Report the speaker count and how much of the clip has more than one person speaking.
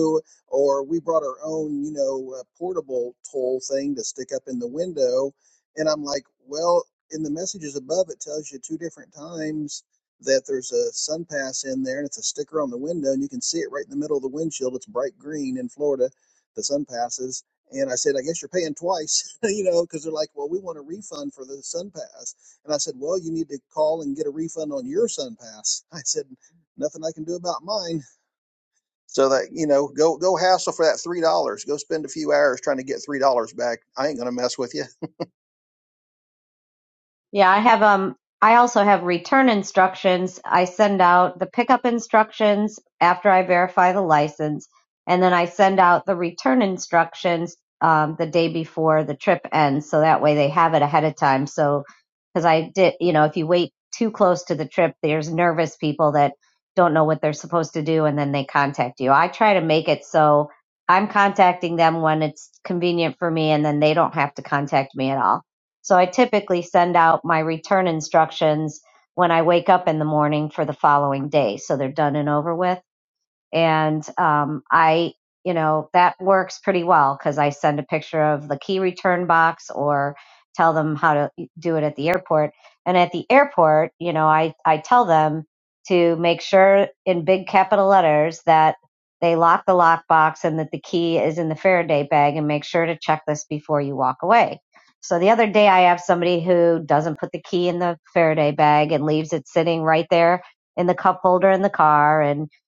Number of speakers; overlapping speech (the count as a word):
two, no overlap